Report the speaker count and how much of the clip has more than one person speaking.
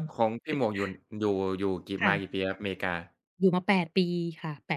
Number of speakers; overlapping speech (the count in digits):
2, about 4%